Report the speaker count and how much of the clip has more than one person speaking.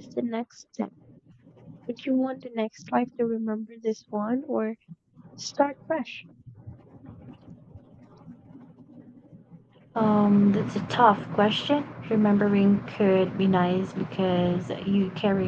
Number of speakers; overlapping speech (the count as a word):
two, no overlap